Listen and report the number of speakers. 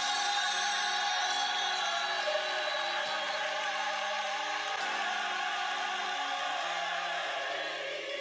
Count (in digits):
0